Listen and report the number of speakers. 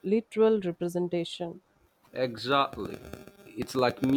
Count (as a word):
two